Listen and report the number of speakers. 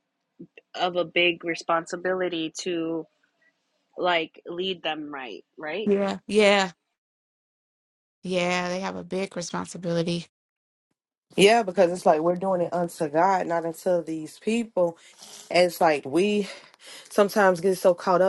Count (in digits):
3